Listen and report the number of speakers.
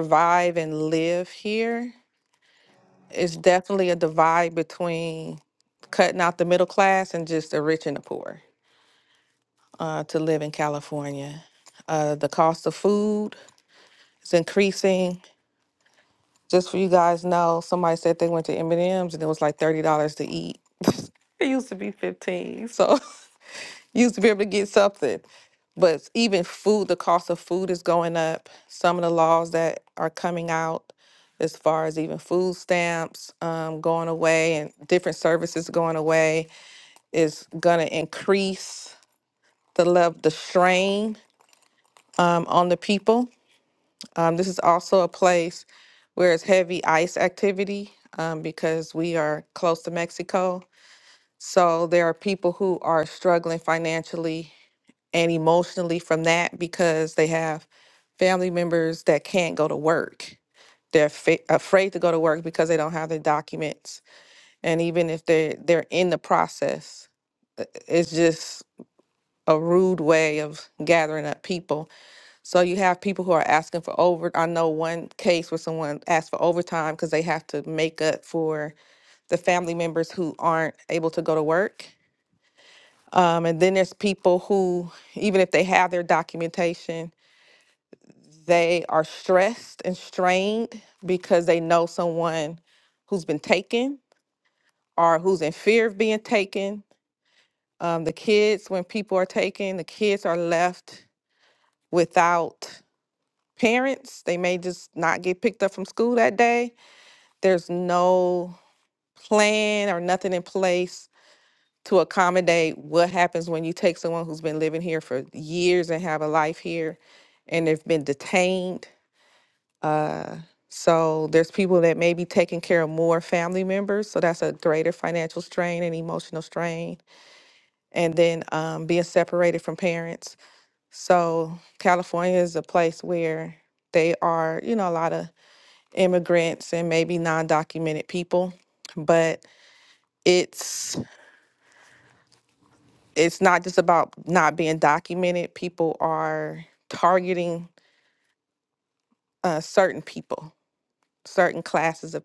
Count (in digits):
1